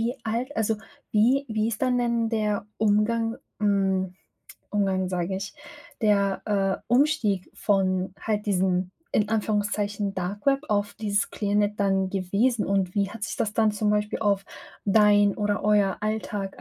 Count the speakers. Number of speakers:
1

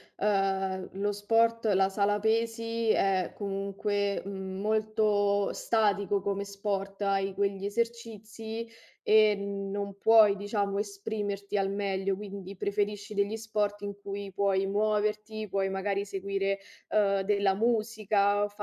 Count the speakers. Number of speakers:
1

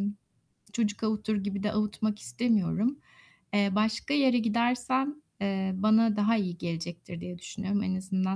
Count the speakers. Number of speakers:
1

